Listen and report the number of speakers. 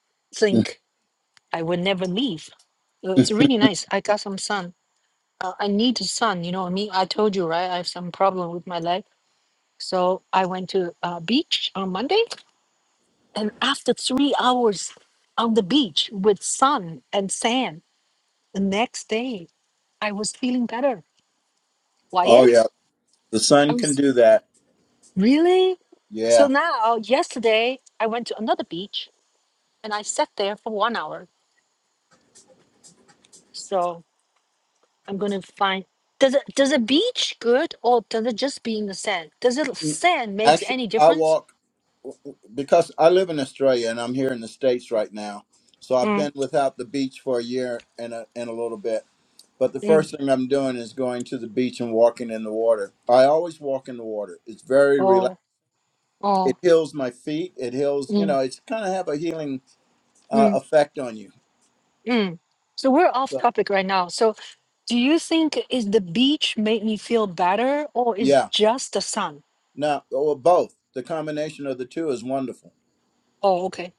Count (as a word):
two